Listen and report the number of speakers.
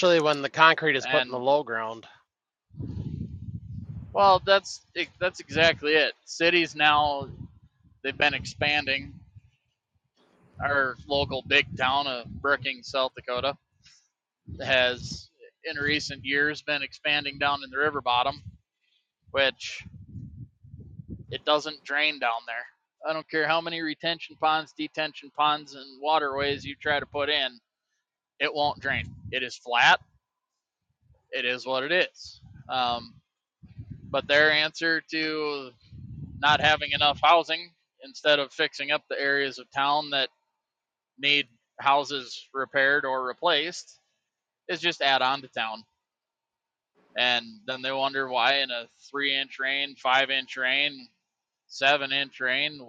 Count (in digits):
2